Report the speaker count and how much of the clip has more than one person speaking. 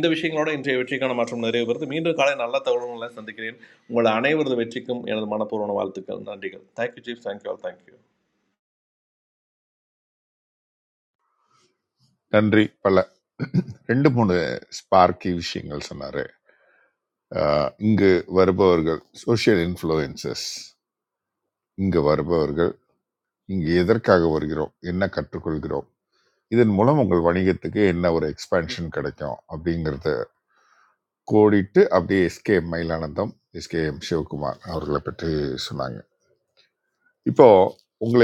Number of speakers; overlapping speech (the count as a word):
two, no overlap